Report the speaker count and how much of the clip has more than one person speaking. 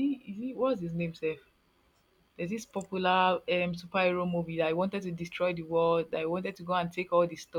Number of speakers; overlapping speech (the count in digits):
1, no overlap